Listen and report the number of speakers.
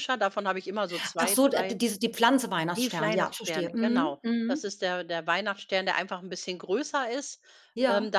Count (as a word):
two